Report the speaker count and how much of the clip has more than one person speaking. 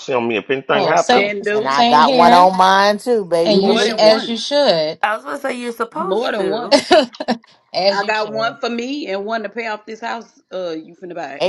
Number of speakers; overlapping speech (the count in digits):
5, about 36%